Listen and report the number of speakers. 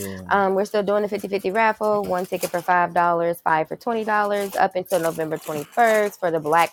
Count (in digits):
1